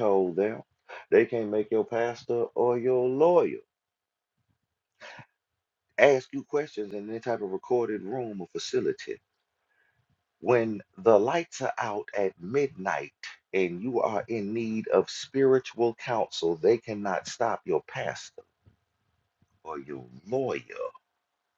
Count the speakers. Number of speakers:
one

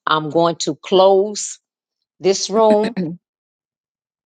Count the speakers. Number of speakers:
one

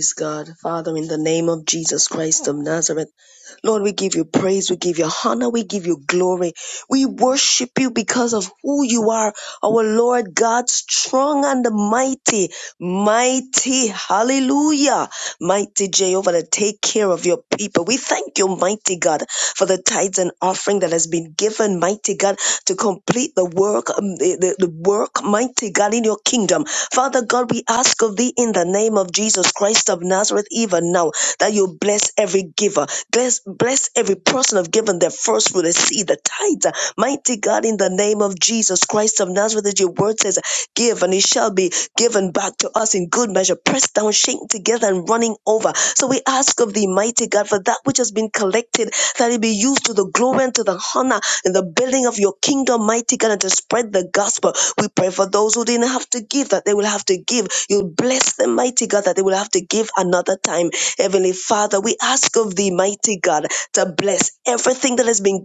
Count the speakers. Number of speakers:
one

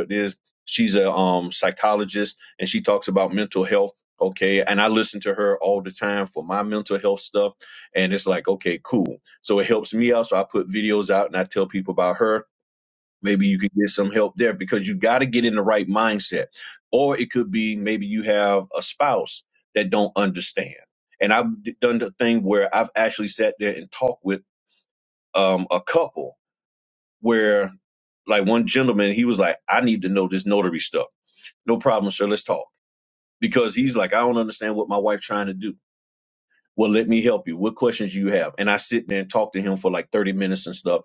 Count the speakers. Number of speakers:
one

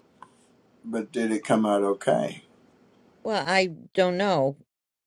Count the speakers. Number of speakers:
two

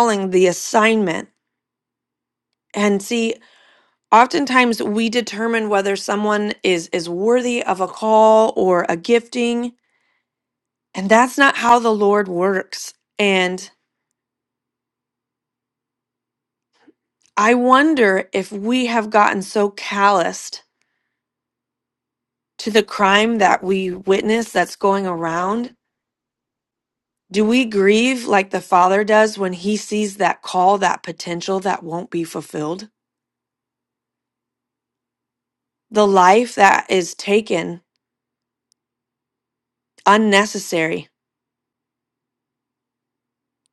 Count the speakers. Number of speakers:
one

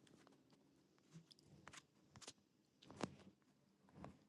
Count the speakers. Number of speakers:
zero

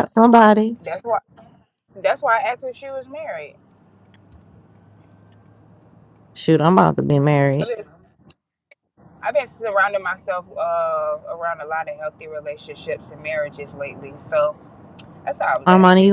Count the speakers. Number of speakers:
two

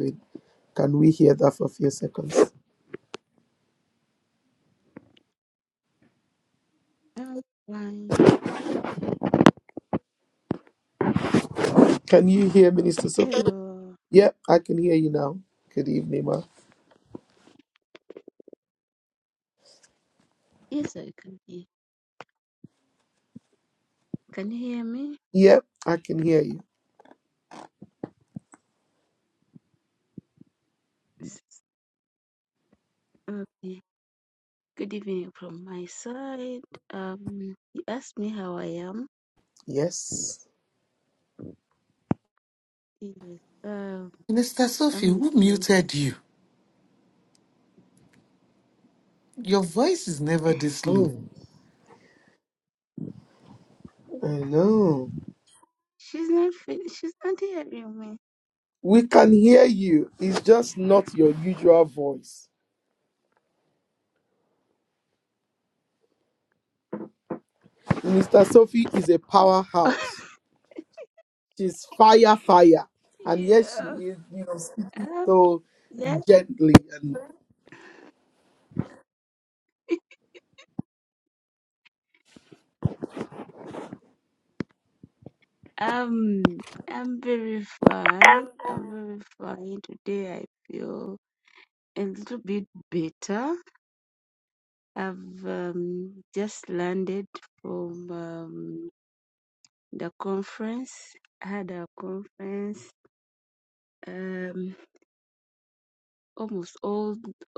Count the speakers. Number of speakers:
three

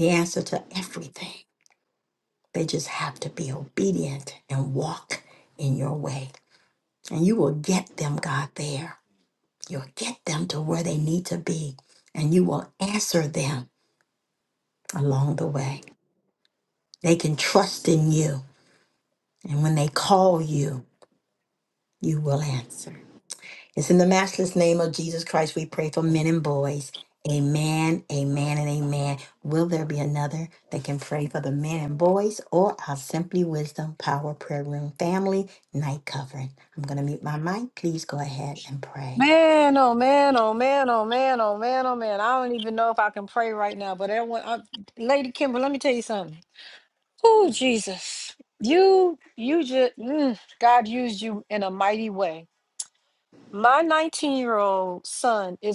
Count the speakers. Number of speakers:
two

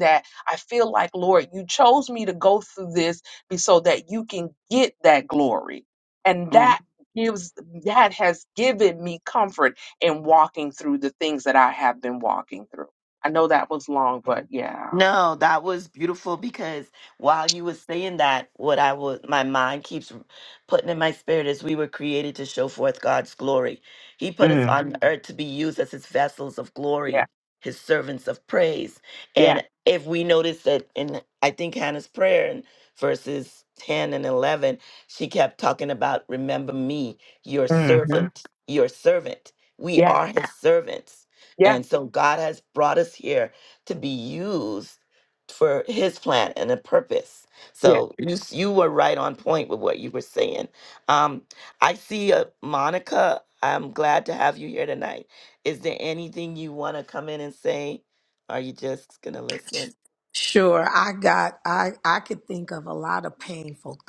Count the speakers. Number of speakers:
three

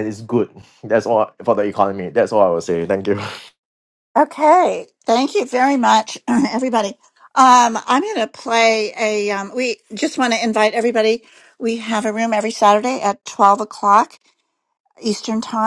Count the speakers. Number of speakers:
two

